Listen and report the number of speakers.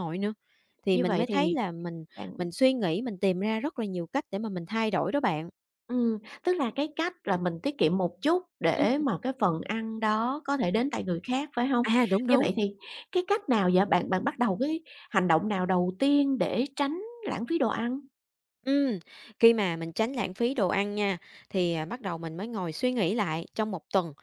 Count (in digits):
2